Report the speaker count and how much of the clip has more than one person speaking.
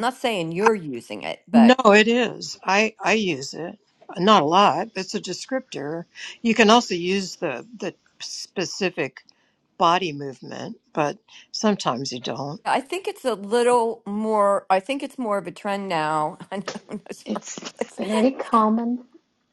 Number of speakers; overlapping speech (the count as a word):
three, about 3%